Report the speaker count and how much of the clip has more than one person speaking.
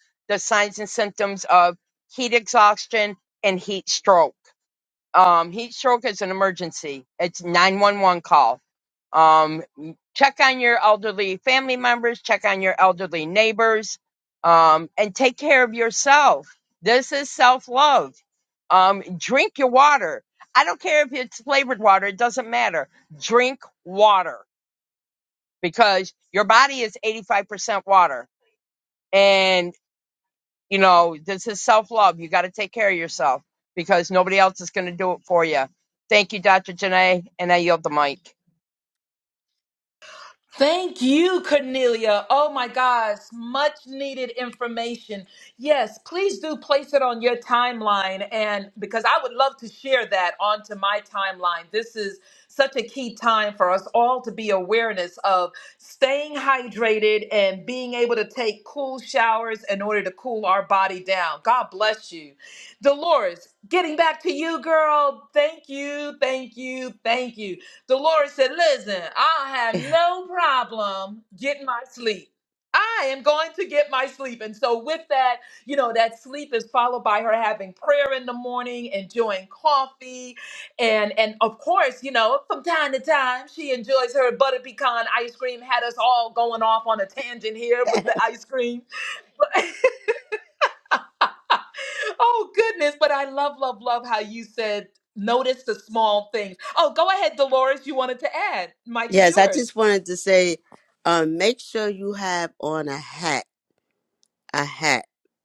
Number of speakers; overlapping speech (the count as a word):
three, under 1%